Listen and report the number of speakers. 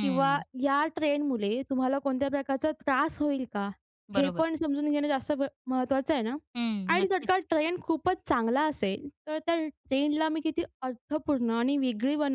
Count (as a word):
two